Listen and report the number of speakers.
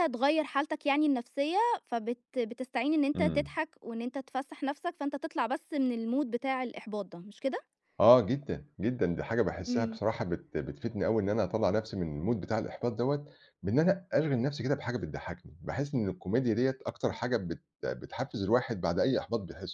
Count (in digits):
2